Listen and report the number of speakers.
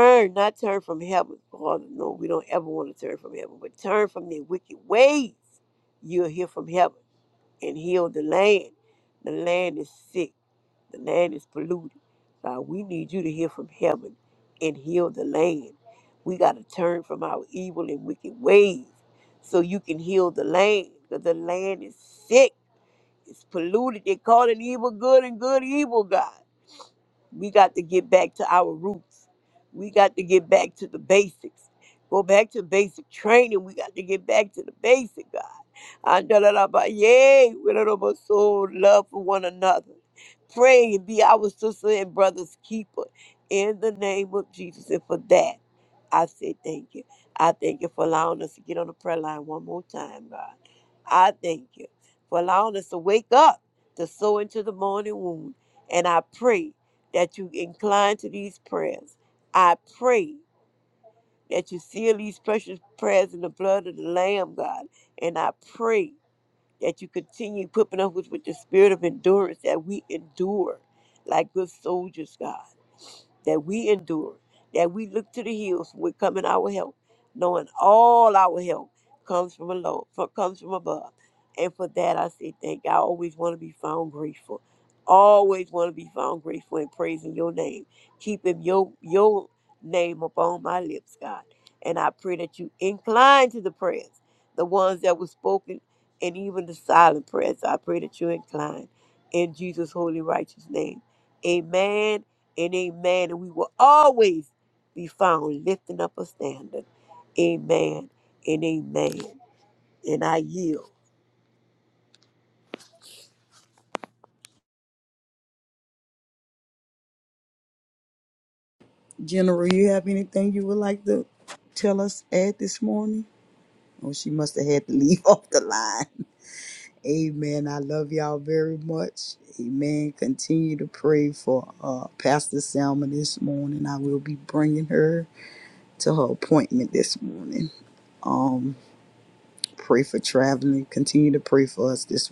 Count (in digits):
2